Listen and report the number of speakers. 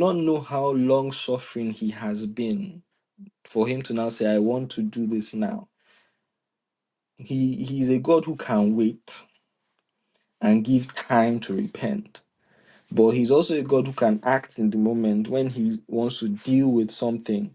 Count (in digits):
1